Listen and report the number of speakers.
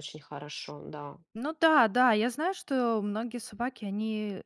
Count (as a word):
two